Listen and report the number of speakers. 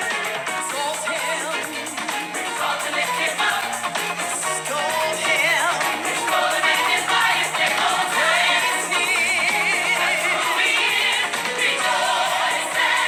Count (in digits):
0